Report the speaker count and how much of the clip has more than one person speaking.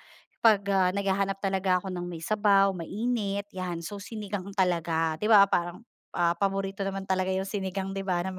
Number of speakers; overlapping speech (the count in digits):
1, no overlap